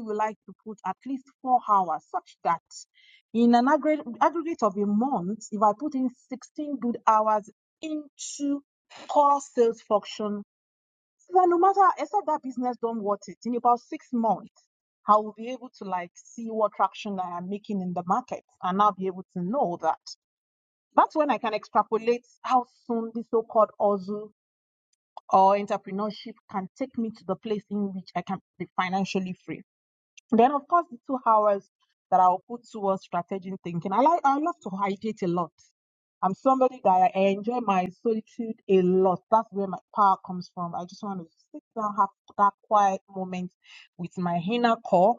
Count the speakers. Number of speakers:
1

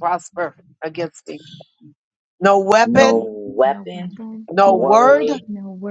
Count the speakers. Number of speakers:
3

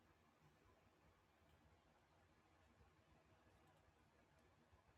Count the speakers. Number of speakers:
0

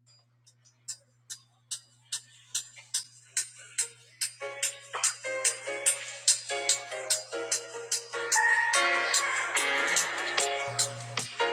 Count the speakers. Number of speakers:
0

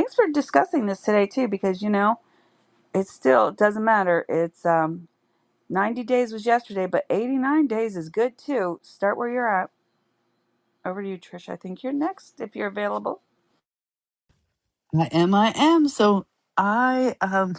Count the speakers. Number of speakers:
2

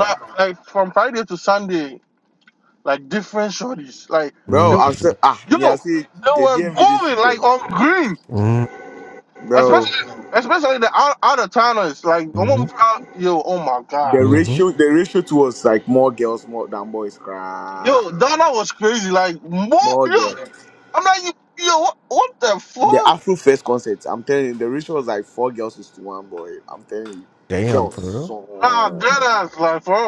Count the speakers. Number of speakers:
3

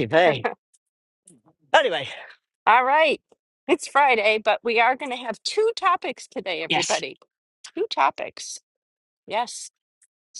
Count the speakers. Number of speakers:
2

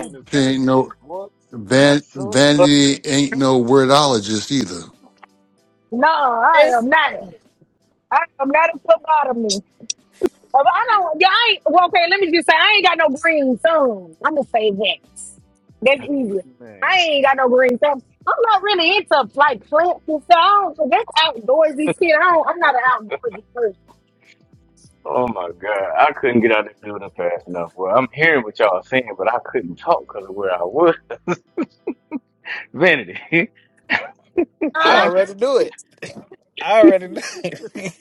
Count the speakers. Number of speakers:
4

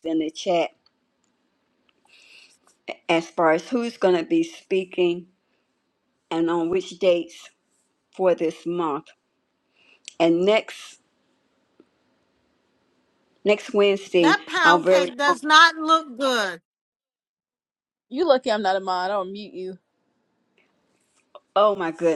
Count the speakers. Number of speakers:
3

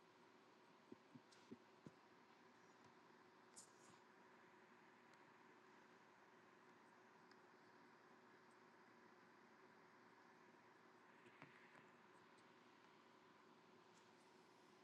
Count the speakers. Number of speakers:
0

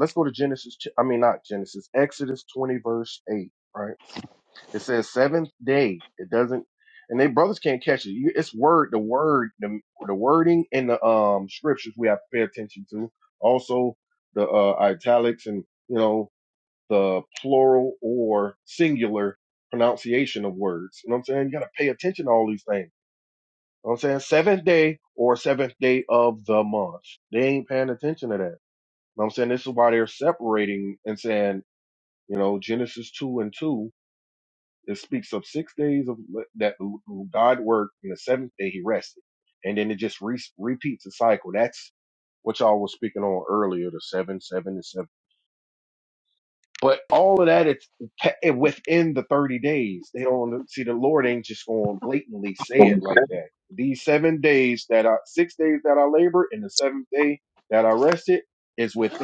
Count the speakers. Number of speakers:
1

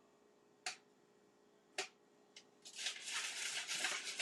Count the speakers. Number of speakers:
0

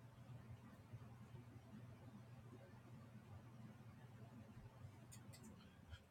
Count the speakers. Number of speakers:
0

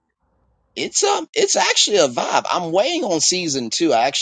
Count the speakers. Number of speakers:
1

